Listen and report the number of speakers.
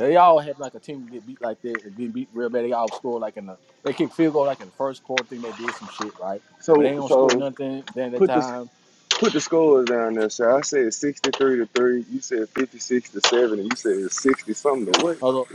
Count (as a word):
two